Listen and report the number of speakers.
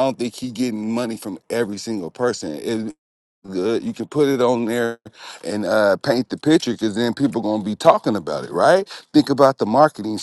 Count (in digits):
1